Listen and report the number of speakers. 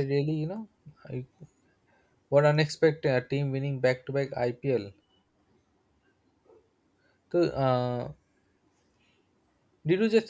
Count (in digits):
1